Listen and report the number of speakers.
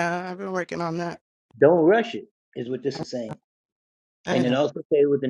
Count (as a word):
two